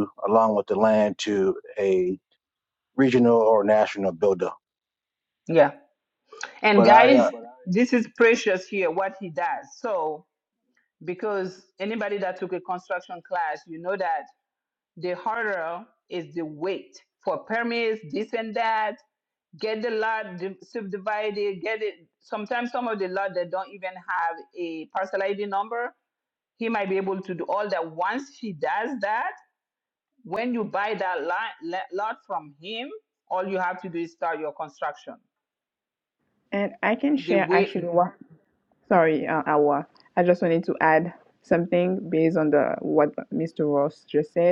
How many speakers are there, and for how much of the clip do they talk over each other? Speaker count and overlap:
three, about 3%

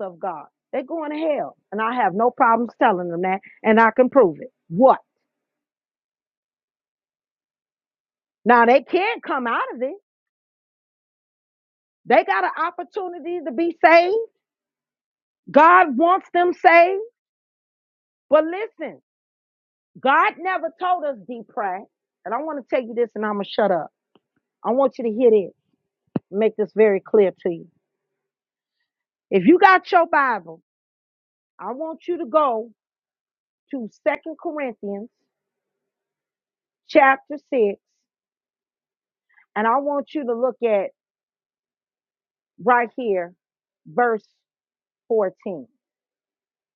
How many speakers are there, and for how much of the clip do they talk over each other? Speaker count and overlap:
one, no overlap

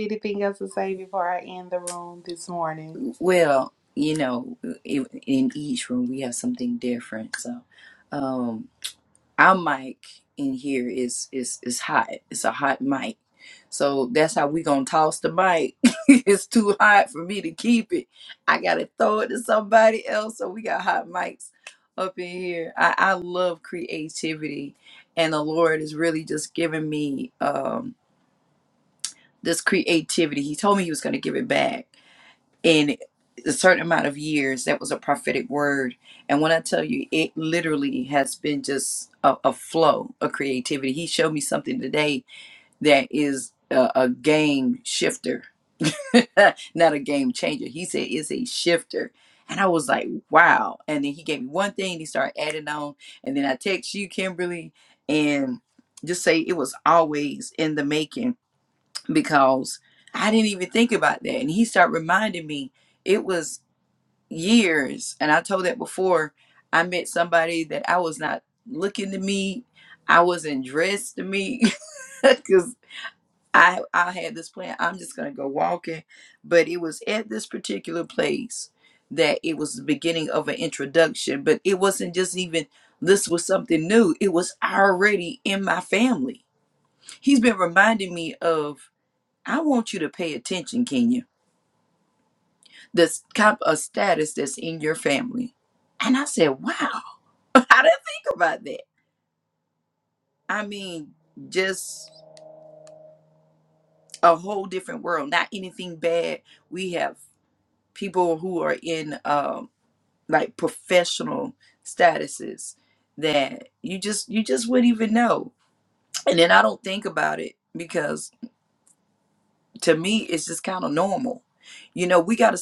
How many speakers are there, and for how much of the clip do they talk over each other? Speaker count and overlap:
two, under 1%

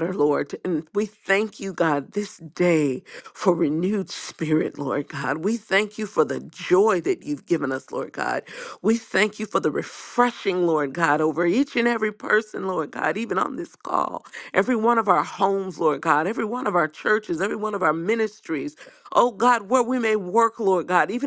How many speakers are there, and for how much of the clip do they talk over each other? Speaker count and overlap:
one, no overlap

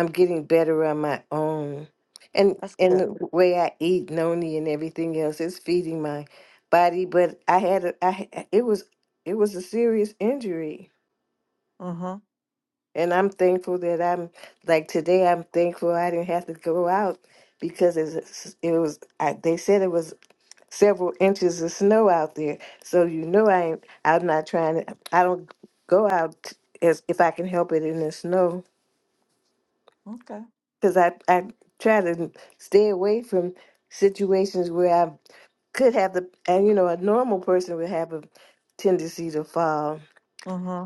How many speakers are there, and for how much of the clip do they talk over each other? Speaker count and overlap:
two, about 1%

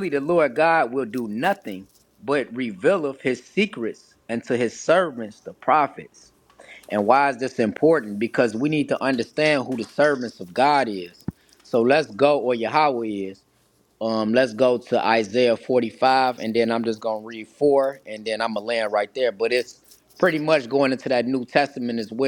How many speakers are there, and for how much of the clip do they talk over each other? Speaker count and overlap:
one, no overlap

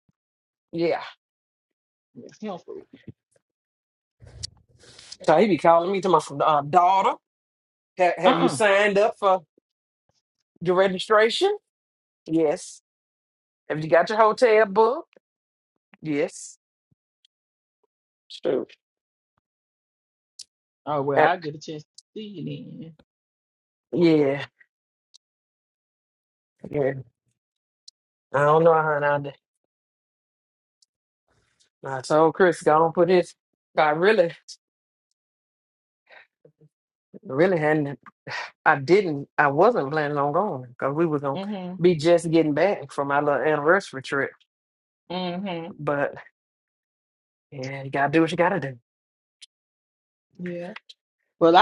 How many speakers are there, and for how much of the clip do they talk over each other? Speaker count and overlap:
two, about 1%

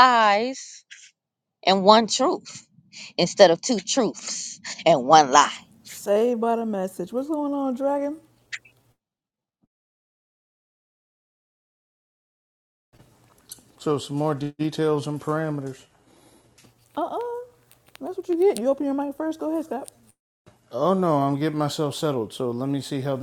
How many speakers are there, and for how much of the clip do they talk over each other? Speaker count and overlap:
three, no overlap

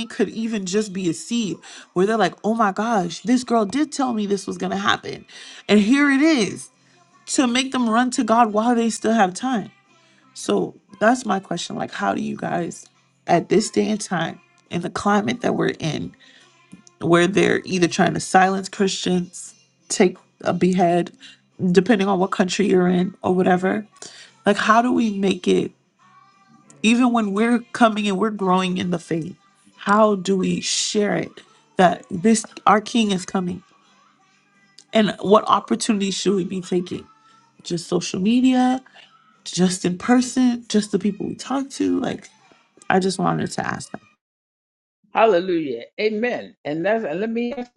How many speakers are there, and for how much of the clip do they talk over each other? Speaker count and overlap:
two, no overlap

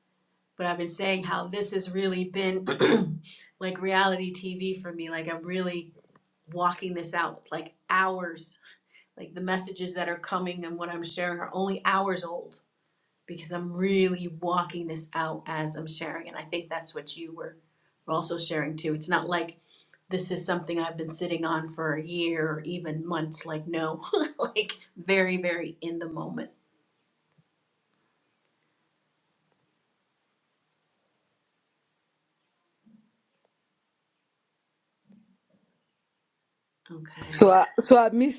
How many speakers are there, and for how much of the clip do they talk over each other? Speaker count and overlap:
two, under 1%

